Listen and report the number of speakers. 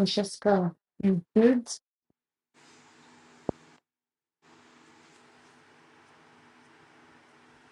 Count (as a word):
one